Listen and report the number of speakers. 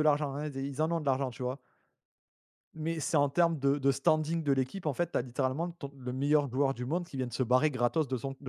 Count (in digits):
1